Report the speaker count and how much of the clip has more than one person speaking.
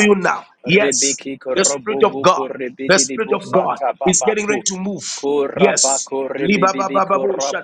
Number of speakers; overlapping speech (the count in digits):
2, about 53%